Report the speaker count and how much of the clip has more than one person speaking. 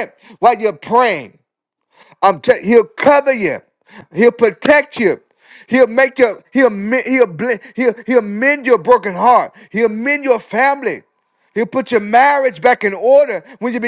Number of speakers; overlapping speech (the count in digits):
1, no overlap